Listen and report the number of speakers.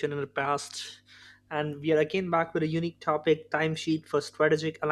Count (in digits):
1